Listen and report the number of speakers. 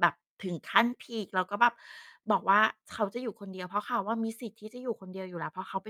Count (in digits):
1